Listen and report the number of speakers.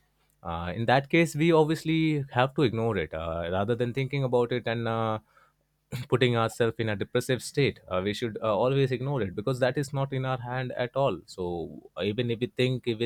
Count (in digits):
1